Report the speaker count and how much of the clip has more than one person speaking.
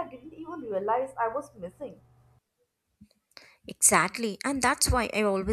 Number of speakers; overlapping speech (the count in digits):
2, no overlap